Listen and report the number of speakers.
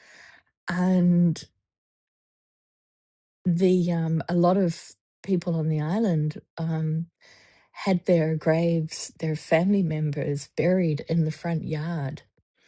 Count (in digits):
1